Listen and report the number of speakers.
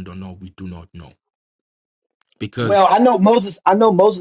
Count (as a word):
two